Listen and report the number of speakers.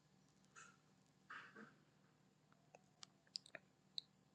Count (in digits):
0